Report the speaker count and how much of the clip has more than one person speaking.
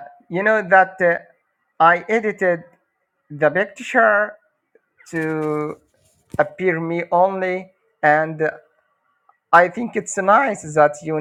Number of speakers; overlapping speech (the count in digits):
1, no overlap